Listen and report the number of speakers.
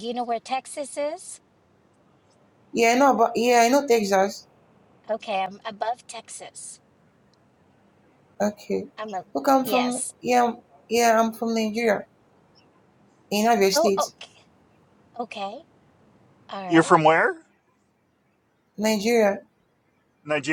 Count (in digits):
3